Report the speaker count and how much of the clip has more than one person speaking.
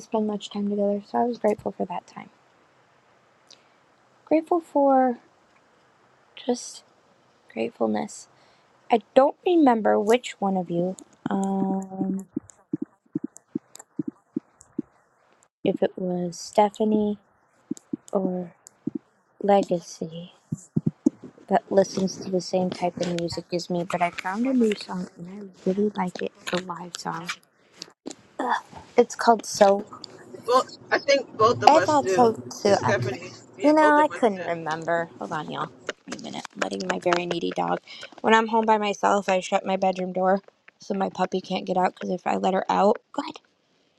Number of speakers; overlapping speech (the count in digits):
2, about 6%